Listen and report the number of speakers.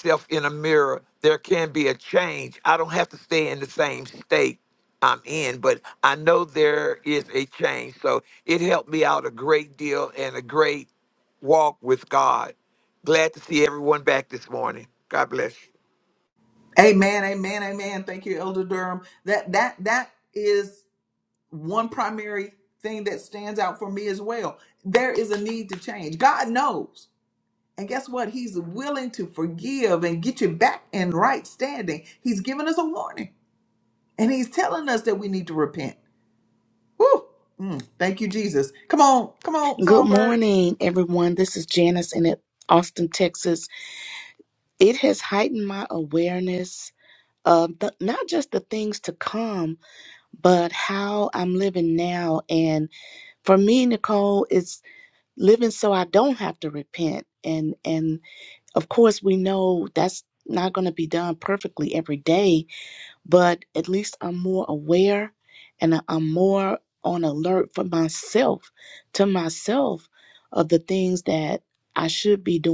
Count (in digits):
3